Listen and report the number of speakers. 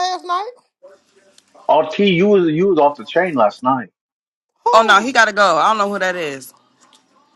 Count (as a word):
three